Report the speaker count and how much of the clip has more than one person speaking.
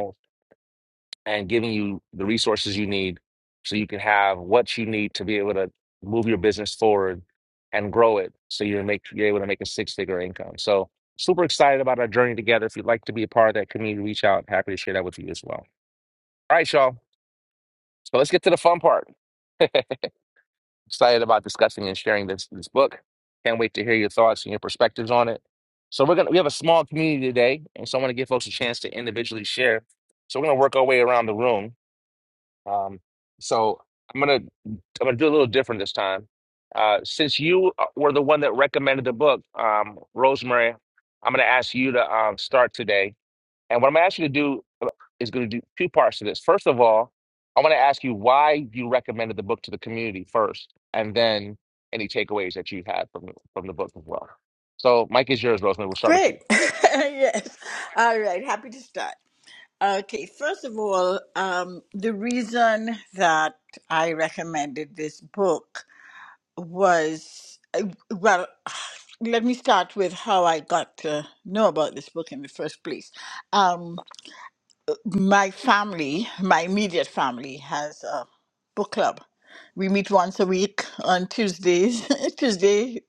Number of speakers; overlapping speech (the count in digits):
2, under 1%